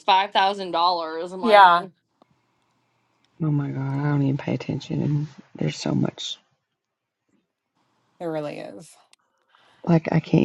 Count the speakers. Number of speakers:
3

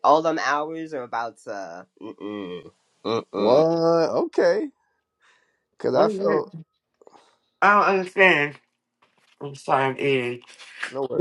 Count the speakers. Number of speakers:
3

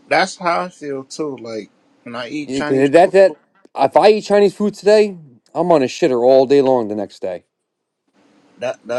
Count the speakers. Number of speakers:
2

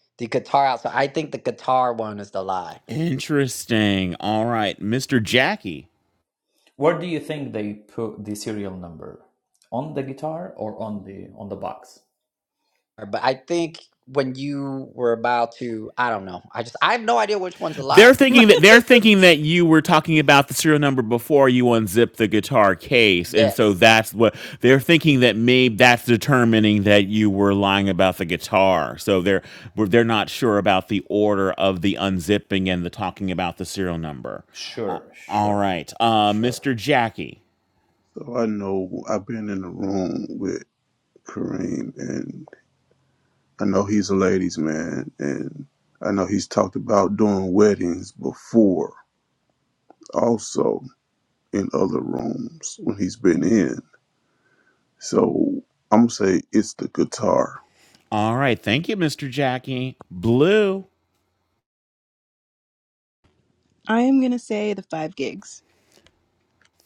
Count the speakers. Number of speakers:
5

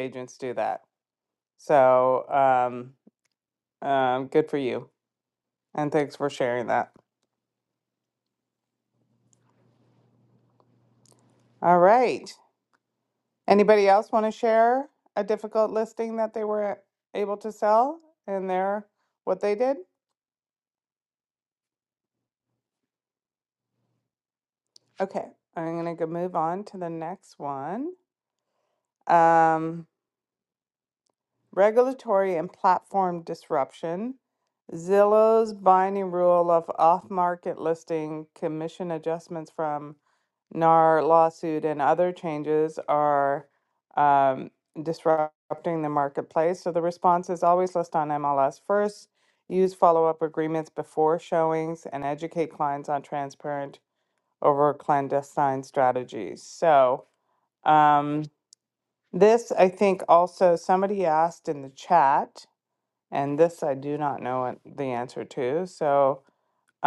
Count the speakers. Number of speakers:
1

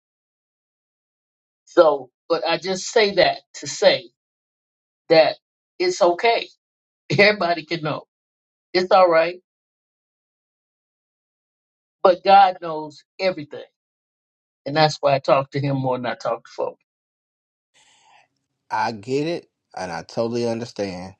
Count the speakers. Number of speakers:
2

